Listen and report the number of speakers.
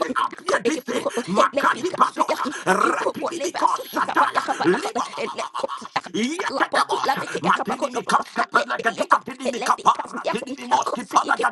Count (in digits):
2